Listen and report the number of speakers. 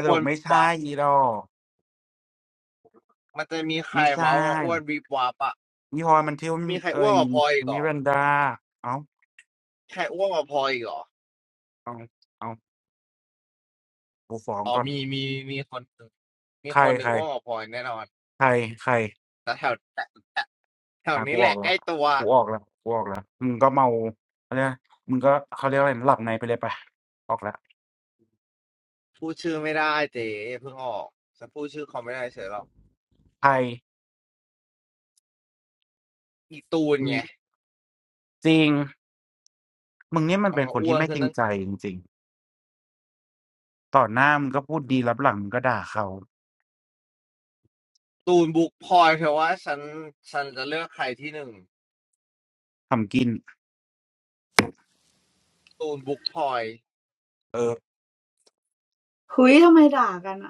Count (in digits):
3